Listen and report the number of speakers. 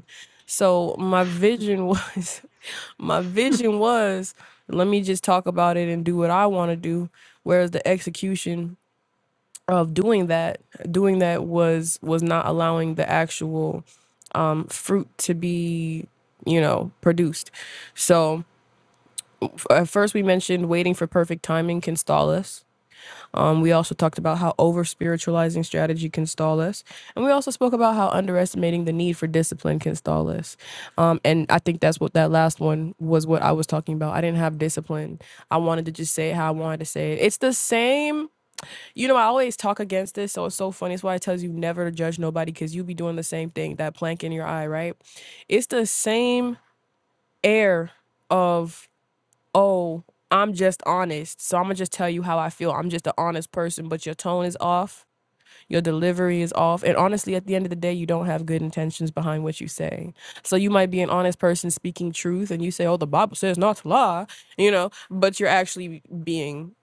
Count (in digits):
1